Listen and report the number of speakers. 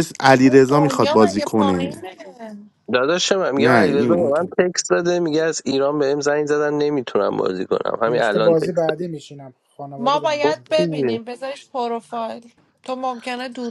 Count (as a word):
four